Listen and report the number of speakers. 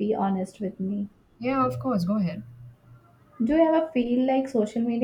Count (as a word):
two